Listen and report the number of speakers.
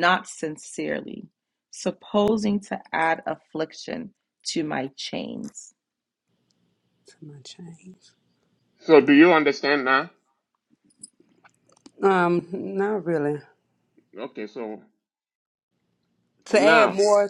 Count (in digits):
3